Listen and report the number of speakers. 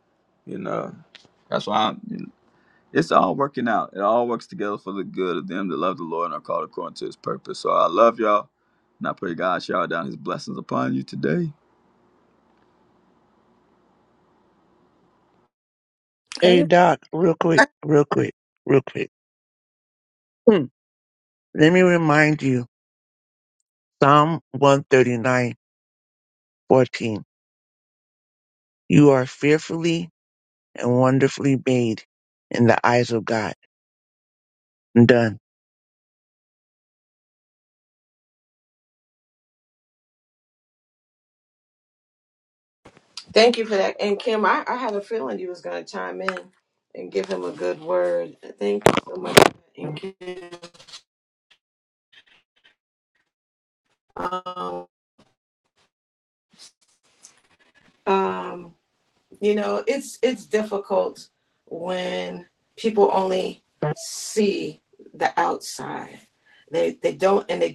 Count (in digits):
3